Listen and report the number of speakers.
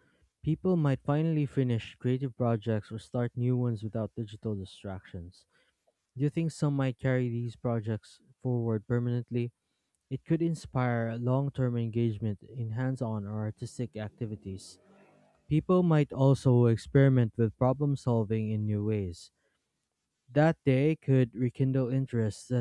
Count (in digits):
1